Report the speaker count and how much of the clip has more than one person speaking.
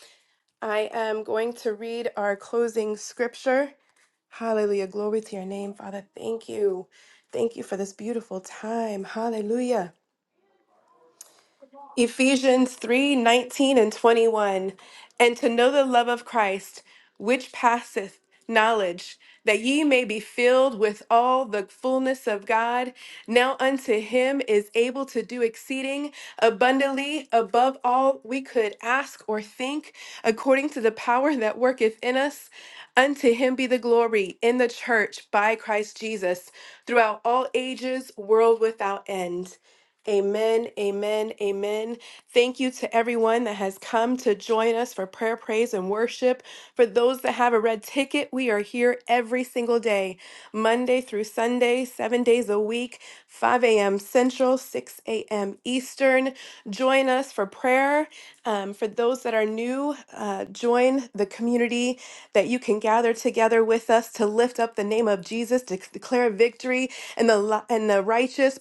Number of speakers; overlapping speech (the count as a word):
one, no overlap